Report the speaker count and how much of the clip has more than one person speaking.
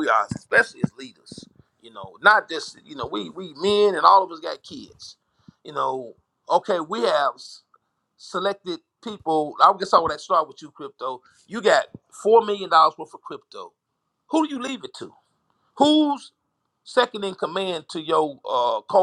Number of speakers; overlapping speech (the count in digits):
1, no overlap